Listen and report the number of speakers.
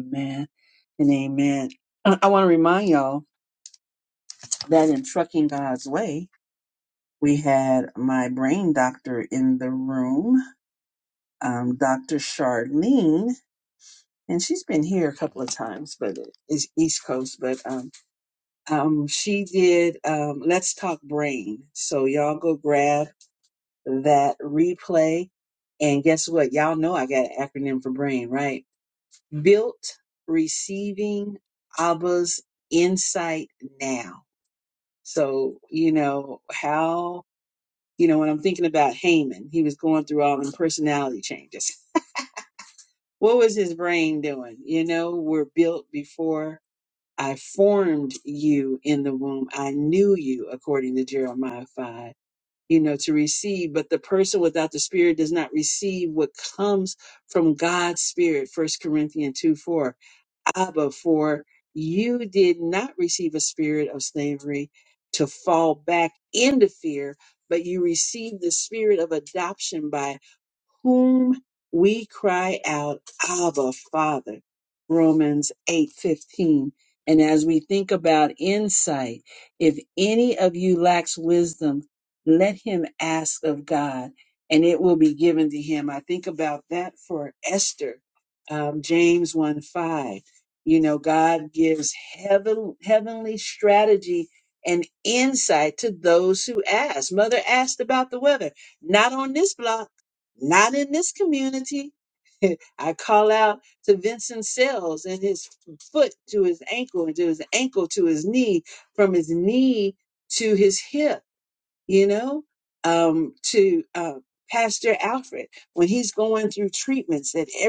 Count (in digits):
1